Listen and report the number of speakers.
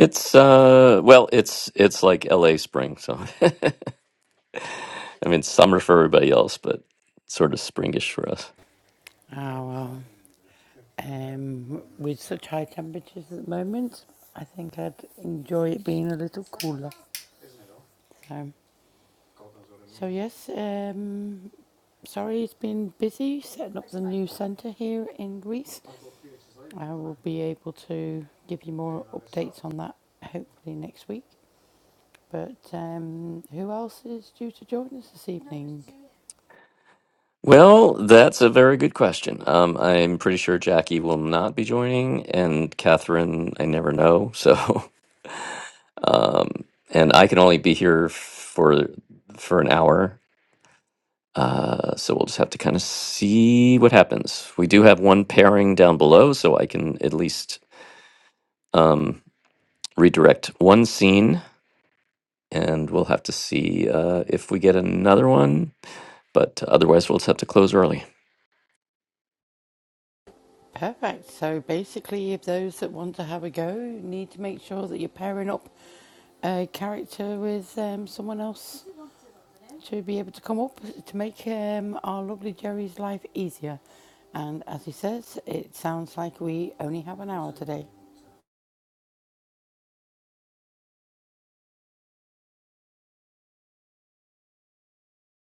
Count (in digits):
2